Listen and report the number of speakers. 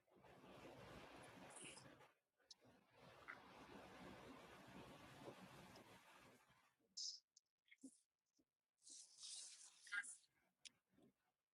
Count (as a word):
zero